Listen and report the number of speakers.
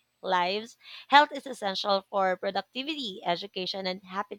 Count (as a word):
one